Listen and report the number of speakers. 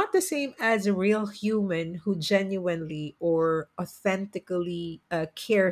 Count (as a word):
one